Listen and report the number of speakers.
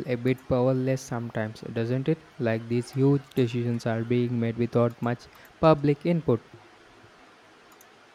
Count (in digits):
1